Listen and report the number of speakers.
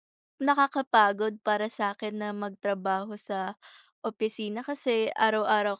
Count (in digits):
1